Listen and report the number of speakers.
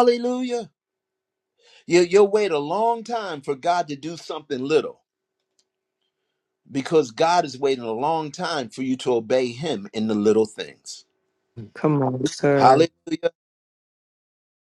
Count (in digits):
2